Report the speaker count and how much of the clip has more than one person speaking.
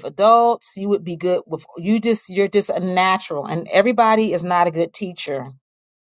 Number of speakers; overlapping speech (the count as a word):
one, no overlap